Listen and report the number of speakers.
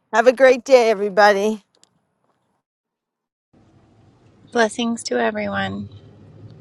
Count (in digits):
2